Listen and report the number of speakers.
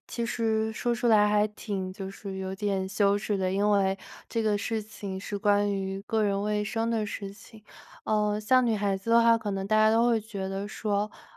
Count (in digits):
1